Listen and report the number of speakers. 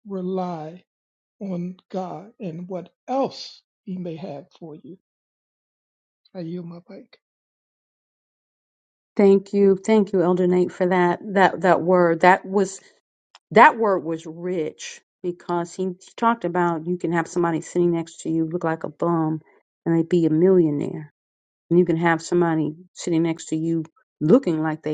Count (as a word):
two